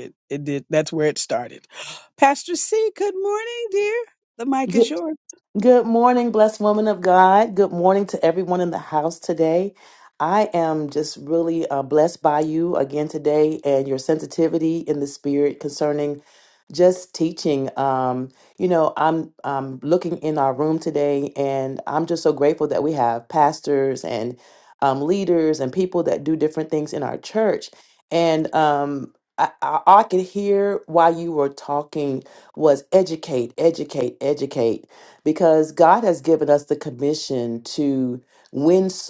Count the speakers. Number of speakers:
two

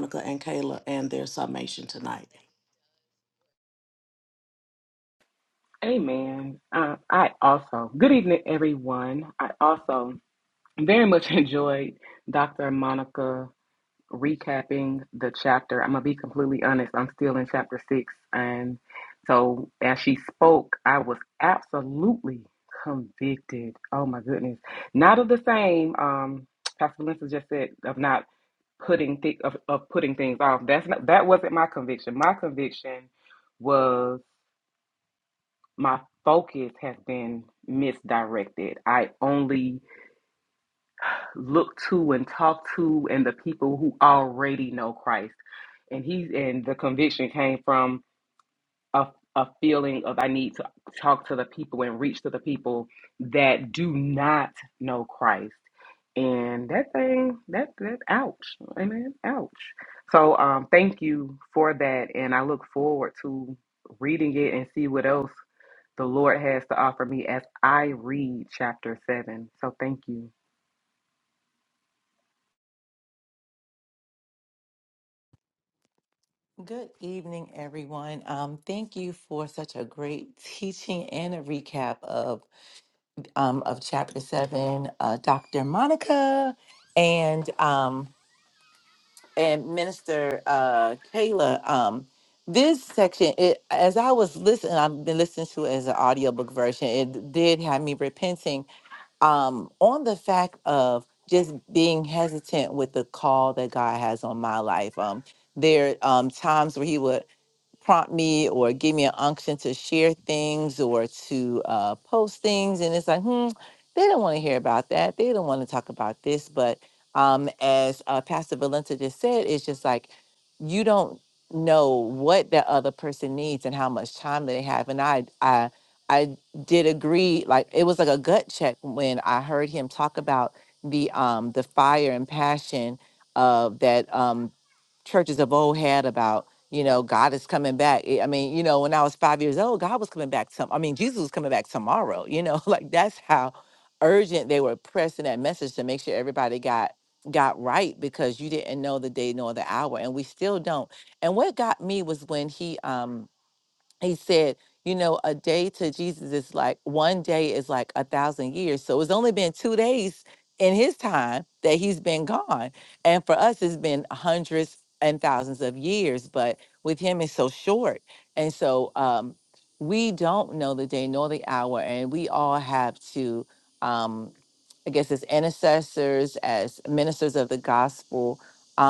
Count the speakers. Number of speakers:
three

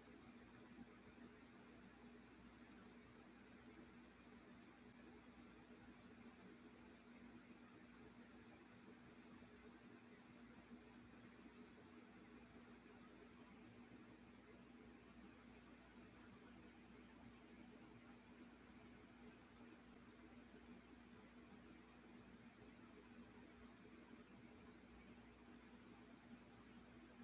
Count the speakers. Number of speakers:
zero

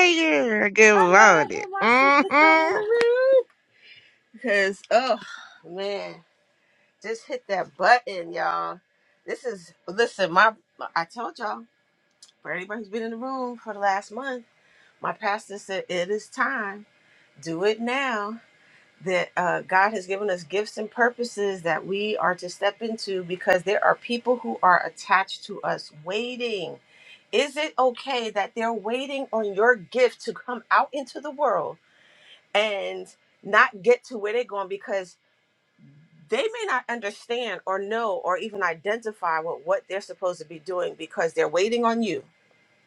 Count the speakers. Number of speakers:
two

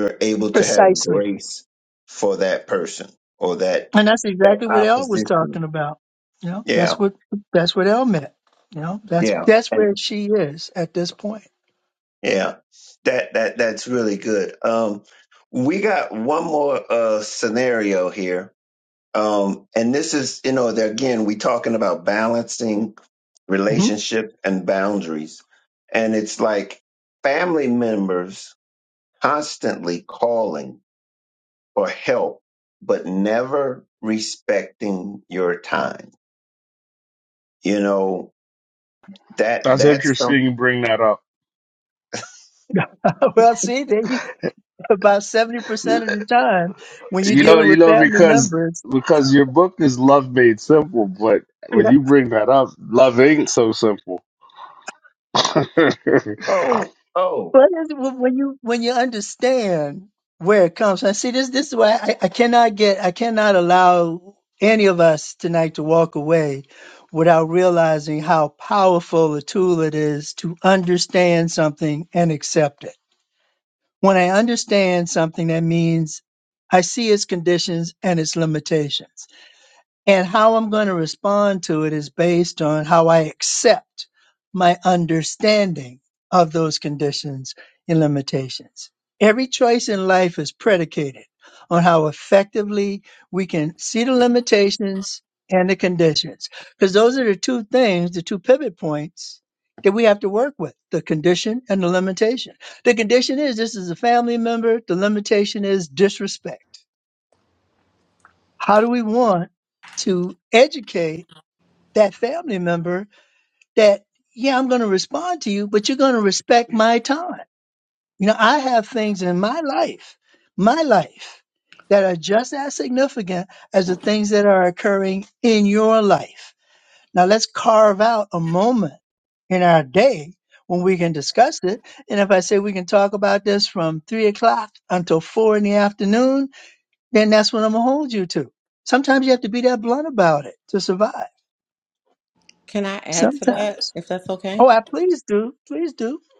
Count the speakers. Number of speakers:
four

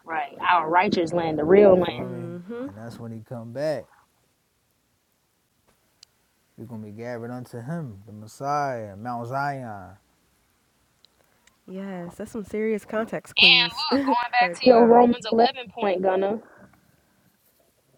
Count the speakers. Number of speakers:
three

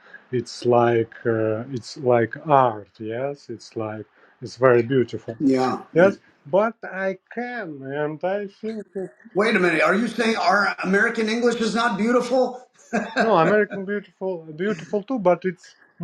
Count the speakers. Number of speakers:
two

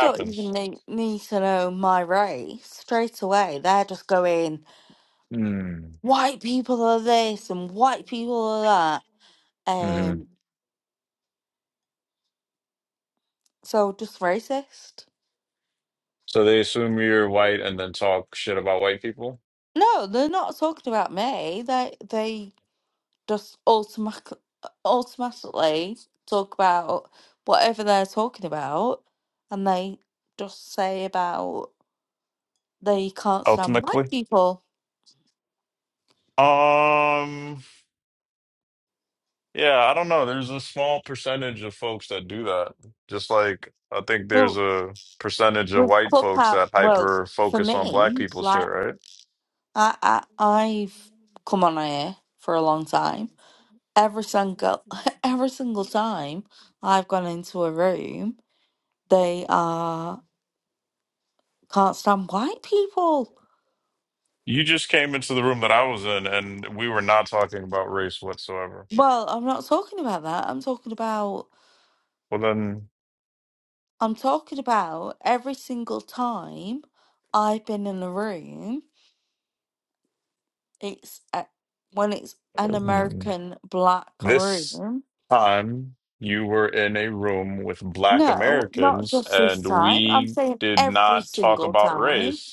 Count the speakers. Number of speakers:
two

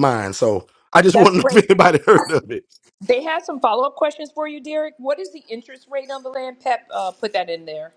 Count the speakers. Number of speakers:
two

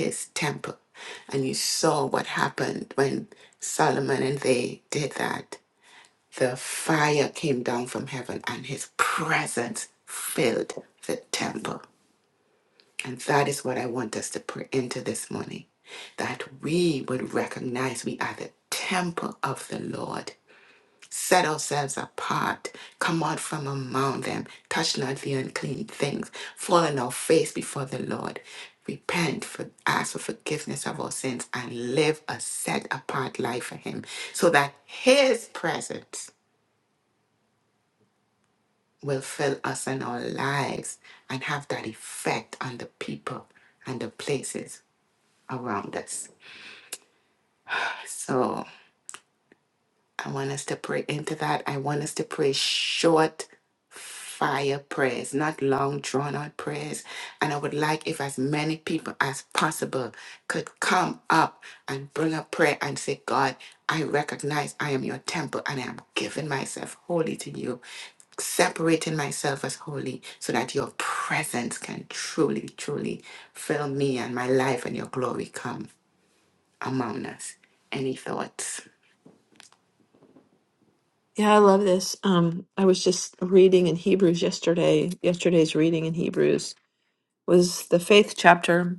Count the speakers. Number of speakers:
two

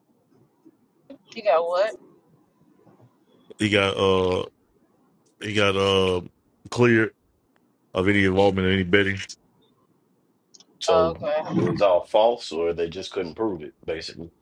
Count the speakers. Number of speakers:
three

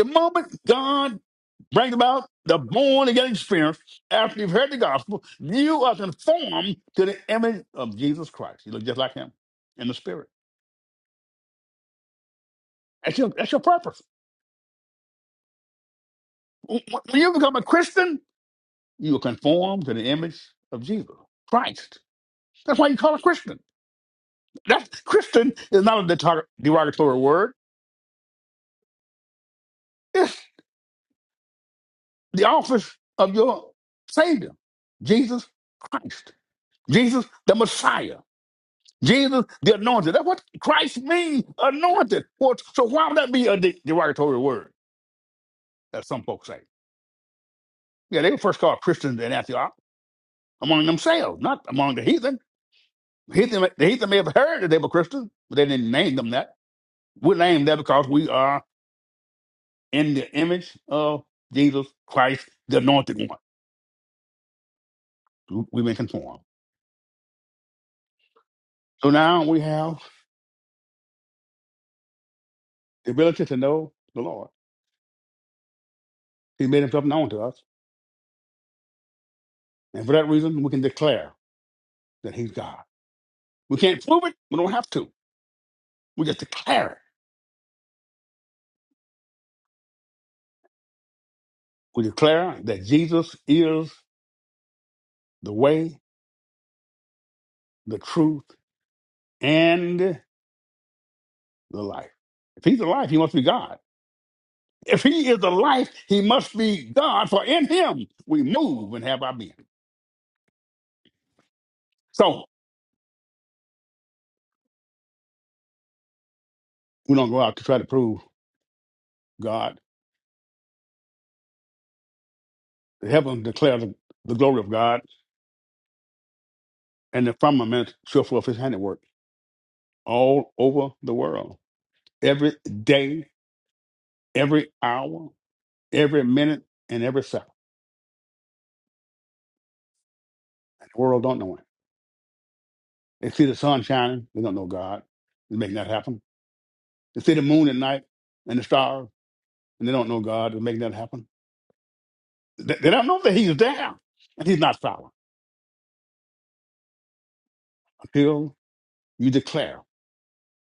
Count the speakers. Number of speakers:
one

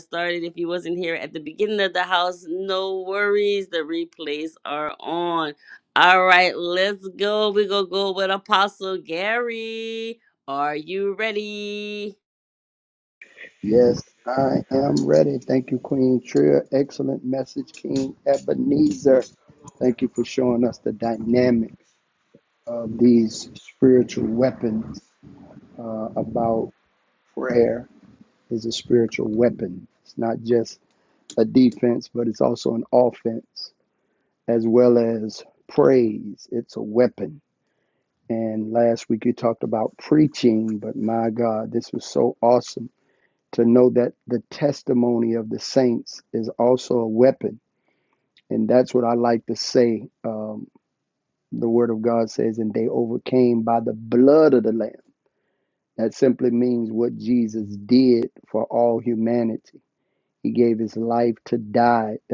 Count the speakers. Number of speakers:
two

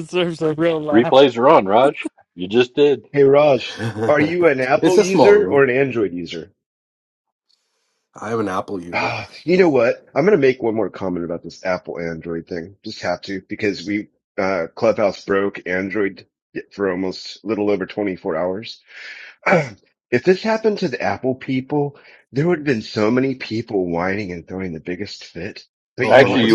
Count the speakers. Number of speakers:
four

